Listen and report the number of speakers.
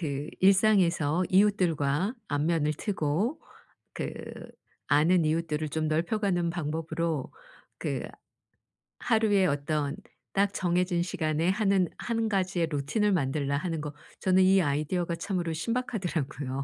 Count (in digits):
1